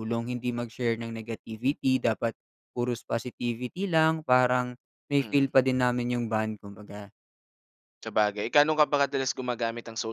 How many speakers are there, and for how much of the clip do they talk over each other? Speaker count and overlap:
2, about 3%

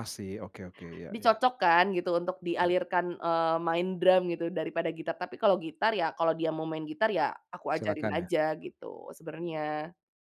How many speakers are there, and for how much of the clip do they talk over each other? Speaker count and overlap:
2, about 7%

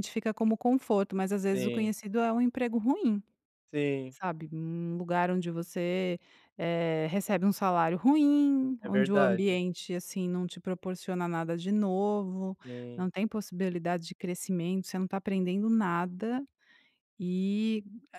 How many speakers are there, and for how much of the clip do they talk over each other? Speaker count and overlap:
2, about 6%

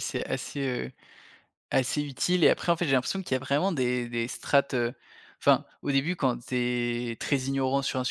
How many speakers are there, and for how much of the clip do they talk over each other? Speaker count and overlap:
1, no overlap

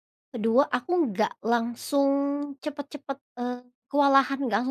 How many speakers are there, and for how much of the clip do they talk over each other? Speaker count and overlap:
1, no overlap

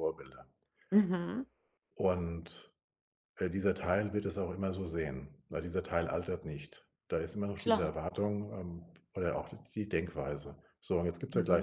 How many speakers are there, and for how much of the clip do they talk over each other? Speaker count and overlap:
2, about 5%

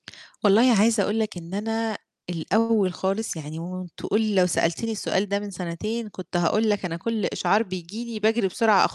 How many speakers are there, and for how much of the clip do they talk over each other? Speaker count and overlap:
1, no overlap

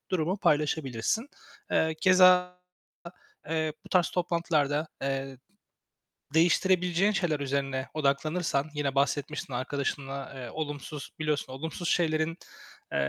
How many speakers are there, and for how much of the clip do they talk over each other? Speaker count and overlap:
1, no overlap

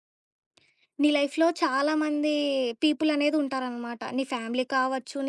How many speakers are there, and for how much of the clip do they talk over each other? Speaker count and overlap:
1, no overlap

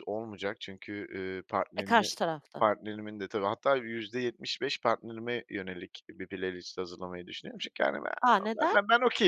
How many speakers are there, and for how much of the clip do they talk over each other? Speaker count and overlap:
2, about 5%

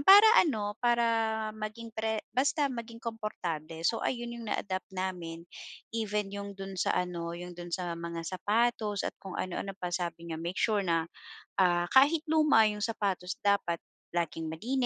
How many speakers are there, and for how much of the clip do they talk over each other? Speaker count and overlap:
1, no overlap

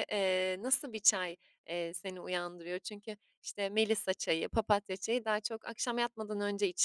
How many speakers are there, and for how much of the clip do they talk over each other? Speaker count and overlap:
1, no overlap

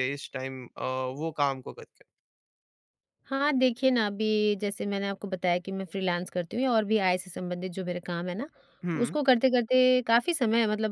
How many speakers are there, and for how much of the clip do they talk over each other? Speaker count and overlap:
2, about 2%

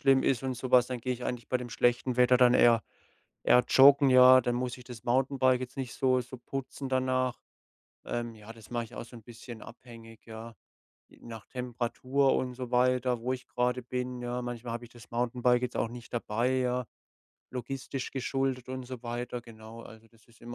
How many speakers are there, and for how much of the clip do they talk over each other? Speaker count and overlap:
1, no overlap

